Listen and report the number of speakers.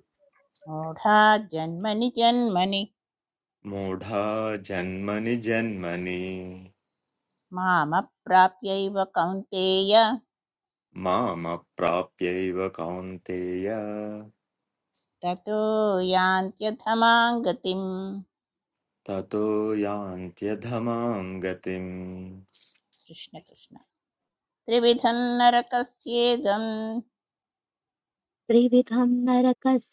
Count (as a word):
three